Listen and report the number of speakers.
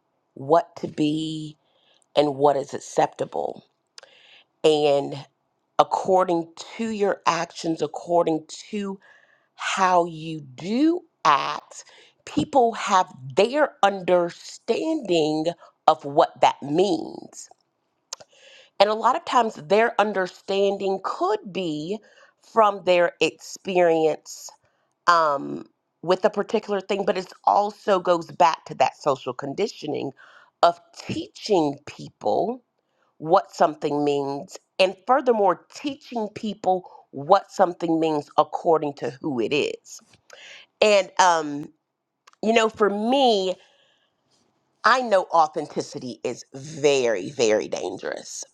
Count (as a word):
one